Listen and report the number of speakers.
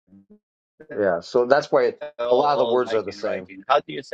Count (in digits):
2